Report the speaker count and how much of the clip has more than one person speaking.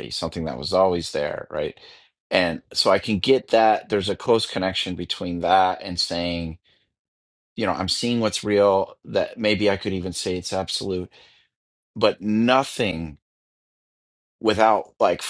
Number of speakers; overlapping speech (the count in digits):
1, no overlap